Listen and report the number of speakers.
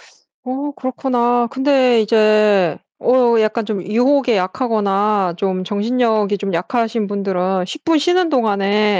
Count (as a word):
one